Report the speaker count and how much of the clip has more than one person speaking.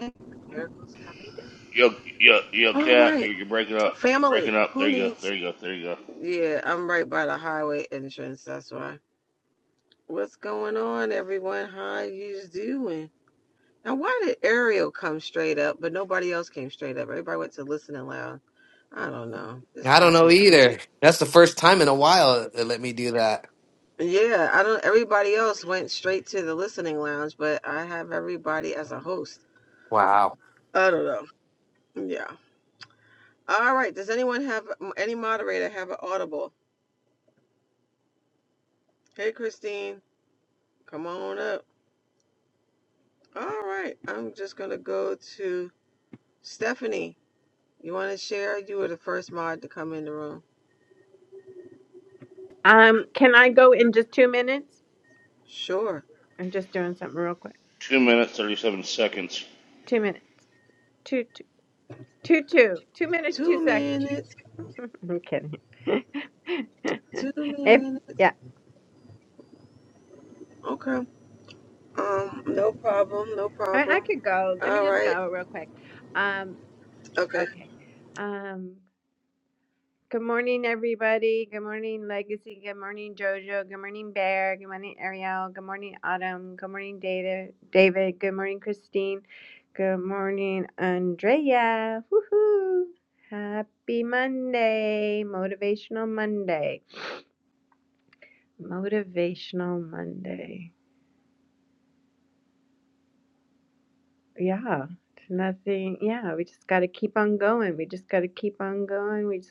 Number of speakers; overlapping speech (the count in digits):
4, about 4%